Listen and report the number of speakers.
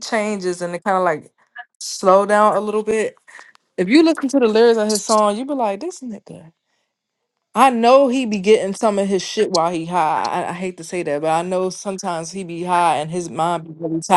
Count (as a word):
one